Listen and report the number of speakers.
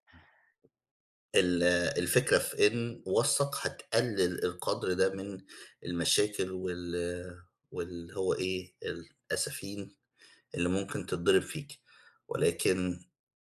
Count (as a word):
one